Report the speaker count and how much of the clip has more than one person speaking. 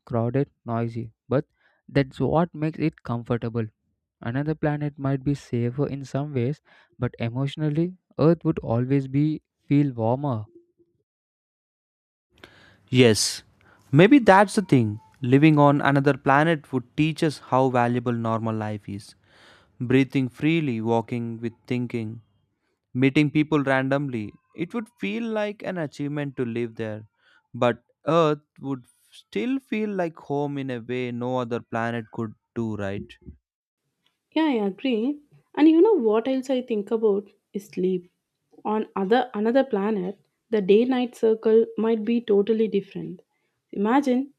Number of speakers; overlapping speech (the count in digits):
3, no overlap